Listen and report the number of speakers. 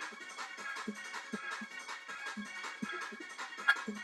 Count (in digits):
0